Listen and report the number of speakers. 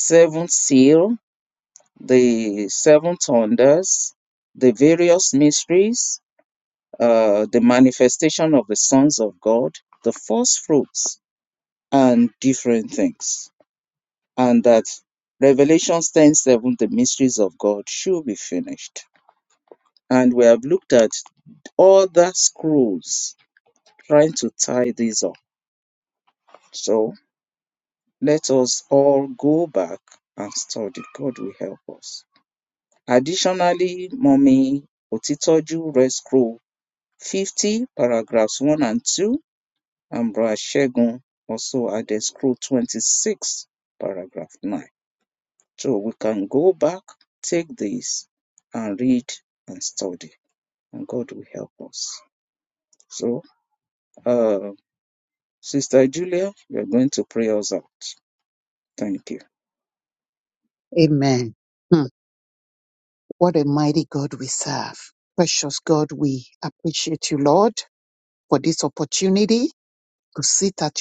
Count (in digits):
2